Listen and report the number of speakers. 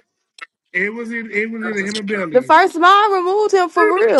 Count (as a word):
two